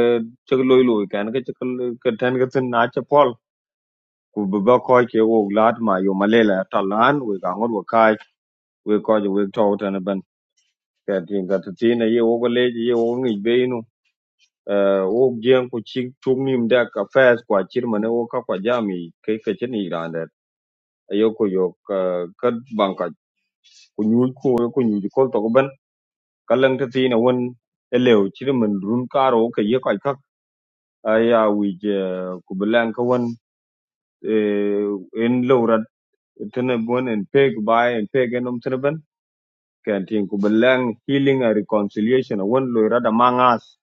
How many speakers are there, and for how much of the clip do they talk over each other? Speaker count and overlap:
1, no overlap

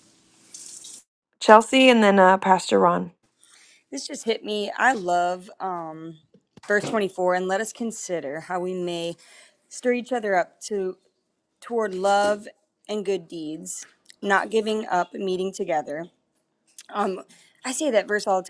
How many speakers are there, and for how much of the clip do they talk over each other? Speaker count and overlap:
2, no overlap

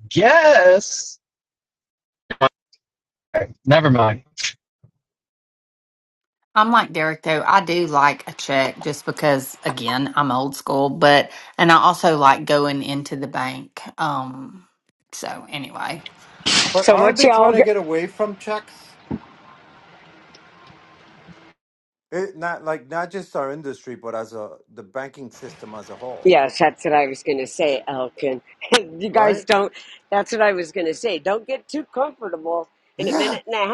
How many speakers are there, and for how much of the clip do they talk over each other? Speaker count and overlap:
4, about 5%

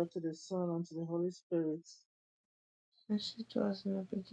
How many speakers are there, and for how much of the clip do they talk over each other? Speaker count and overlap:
2, no overlap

